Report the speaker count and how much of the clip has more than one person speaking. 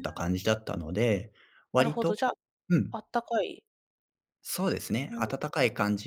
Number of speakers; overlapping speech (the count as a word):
two, about 14%